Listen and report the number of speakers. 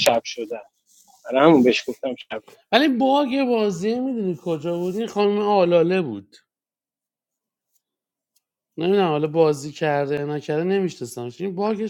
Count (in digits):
2